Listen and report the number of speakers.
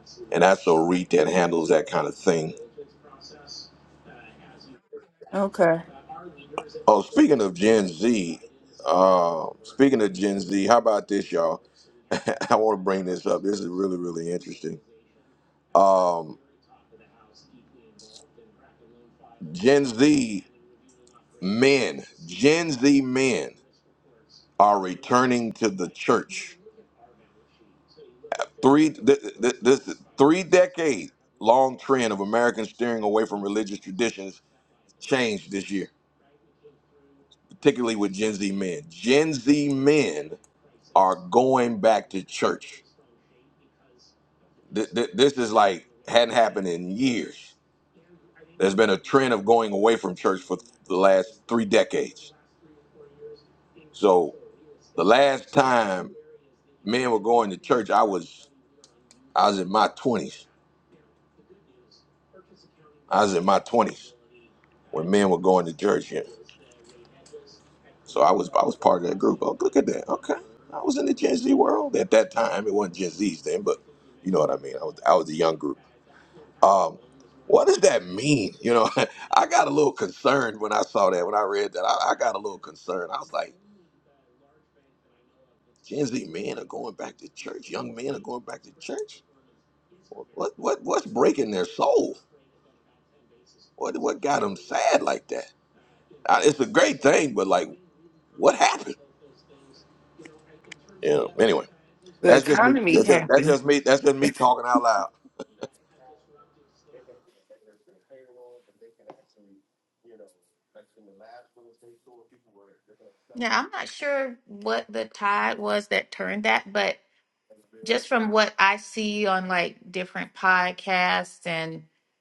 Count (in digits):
3